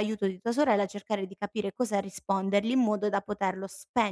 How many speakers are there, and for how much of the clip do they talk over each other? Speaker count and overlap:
1, no overlap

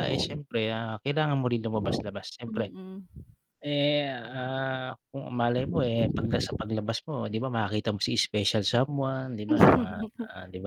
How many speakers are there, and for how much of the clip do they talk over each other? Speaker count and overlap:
2, about 9%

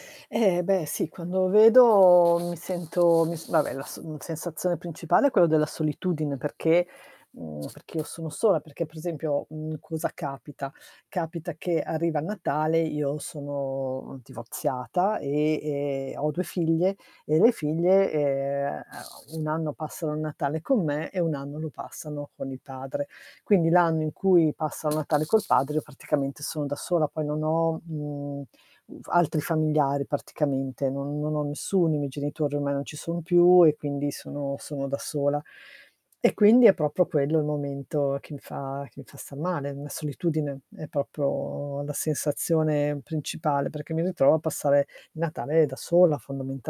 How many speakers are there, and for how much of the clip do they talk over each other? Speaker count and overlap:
1, no overlap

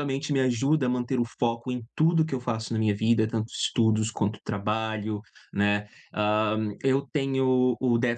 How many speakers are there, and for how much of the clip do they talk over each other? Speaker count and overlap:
1, no overlap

